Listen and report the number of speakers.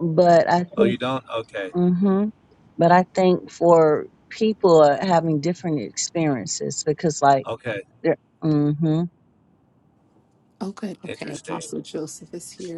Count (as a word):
three